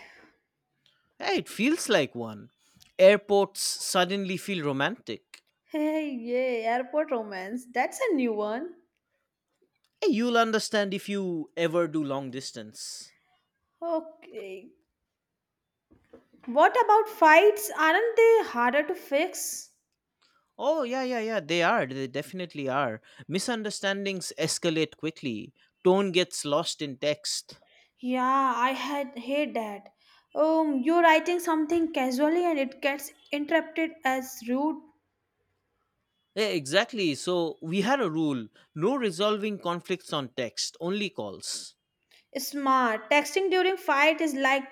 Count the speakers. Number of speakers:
two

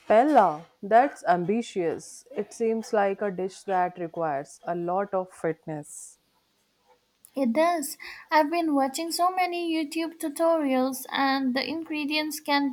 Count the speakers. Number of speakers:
two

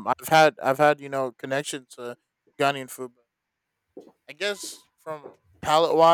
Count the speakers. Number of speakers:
one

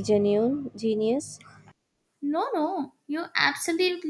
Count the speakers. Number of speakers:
two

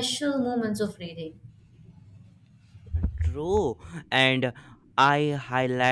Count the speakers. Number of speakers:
two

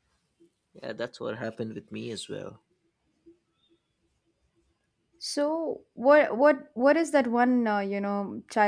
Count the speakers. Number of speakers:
two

